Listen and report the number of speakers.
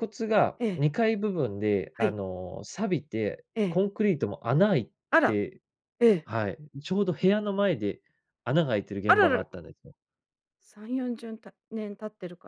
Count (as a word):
two